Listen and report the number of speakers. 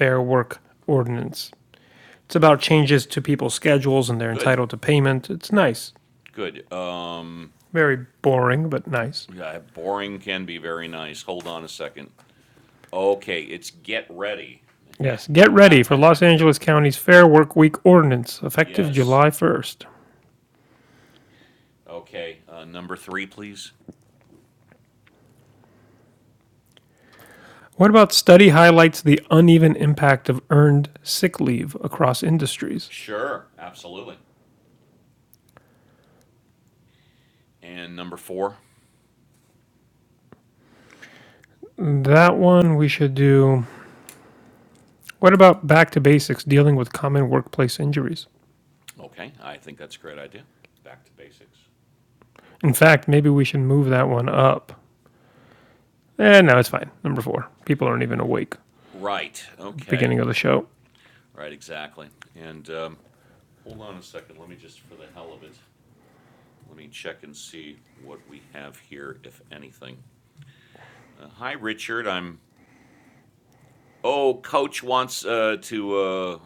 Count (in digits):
2